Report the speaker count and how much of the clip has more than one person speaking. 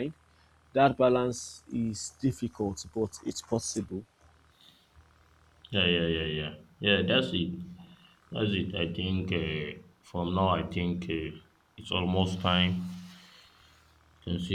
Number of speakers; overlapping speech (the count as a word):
two, no overlap